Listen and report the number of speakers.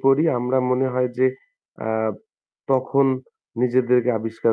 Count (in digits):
1